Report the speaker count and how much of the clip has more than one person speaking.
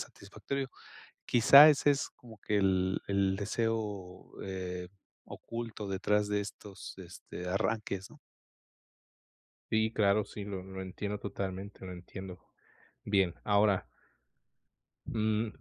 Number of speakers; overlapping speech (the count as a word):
two, no overlap